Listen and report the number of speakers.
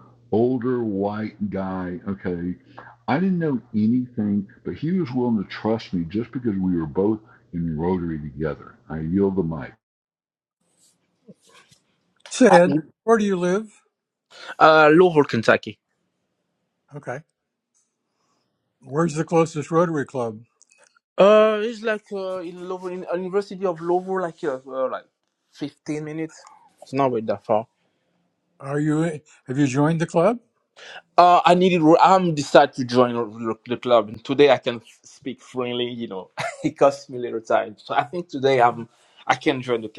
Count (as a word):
three